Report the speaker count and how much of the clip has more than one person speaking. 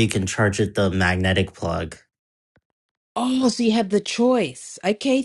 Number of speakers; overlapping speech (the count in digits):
2, no overlap